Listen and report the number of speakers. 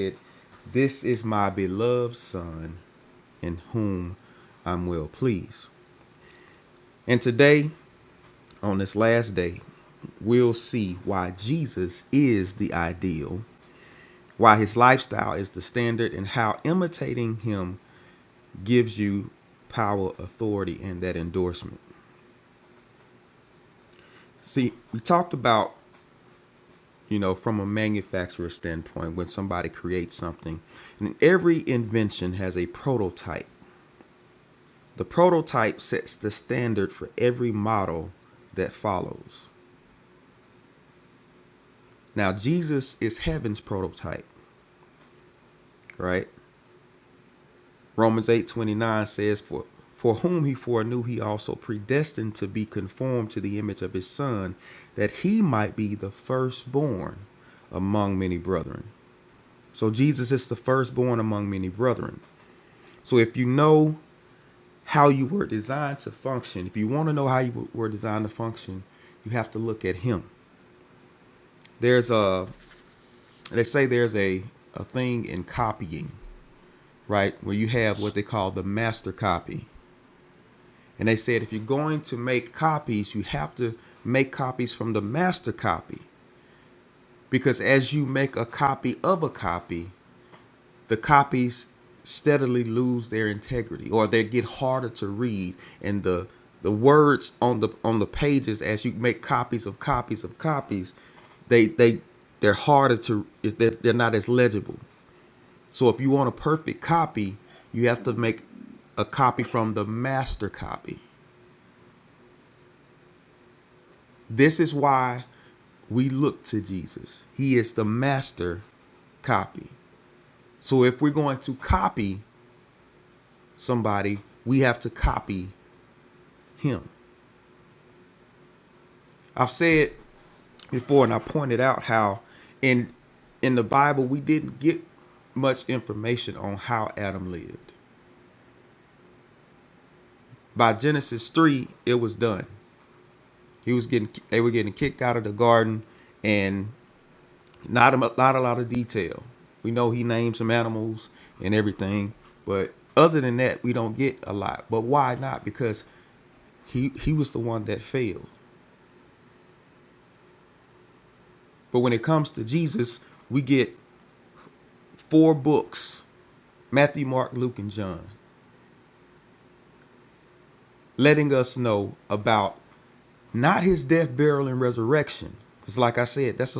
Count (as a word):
one